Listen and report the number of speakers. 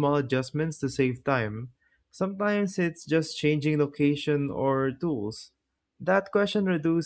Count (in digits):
1